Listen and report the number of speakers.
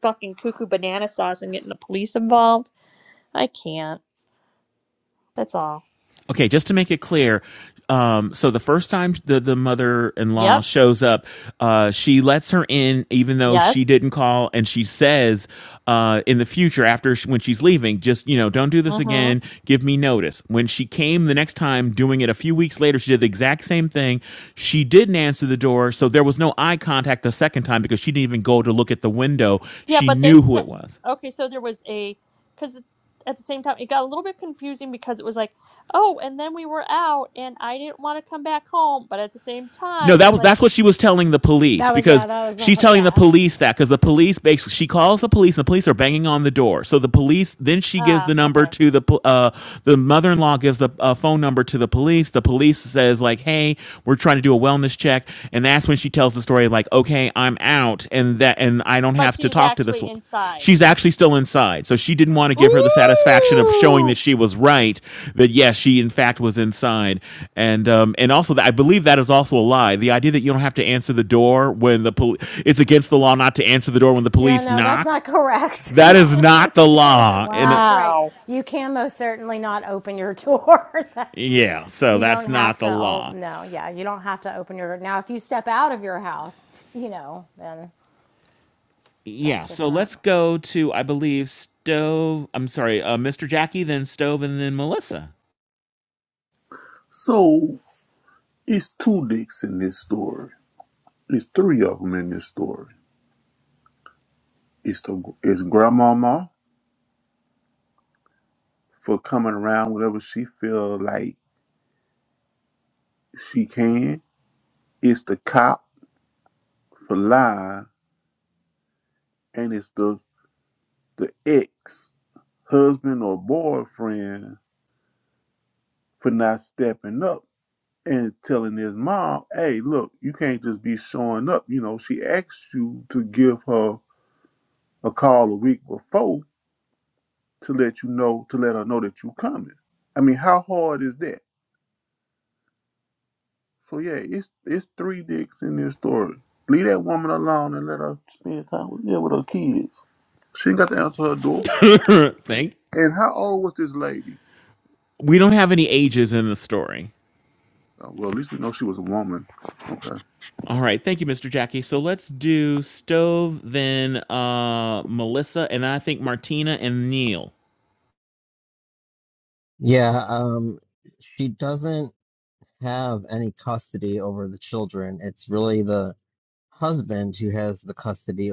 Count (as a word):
five